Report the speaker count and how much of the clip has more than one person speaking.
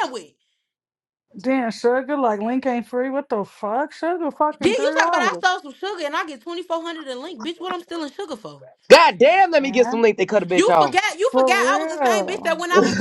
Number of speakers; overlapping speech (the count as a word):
three, about 21%